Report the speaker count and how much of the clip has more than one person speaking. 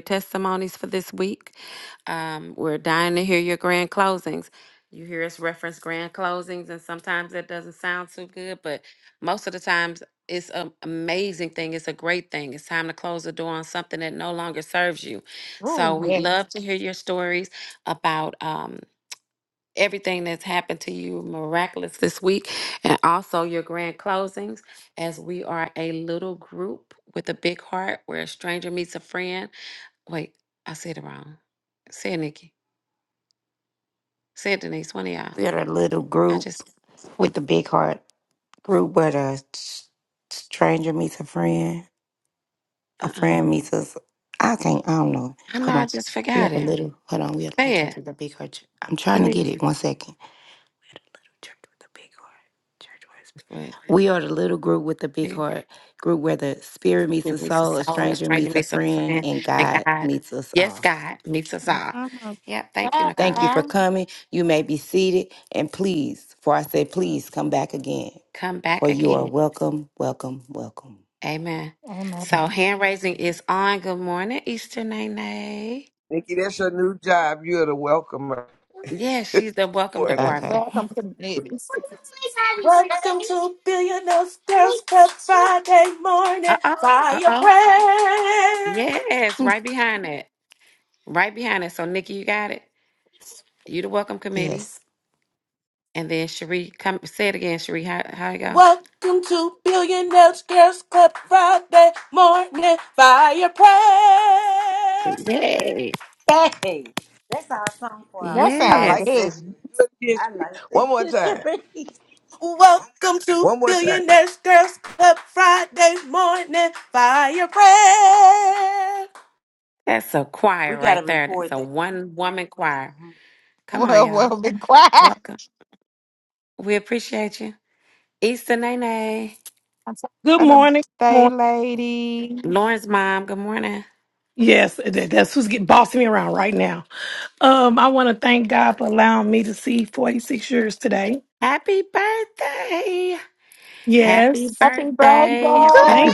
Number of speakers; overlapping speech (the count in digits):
7, about 11%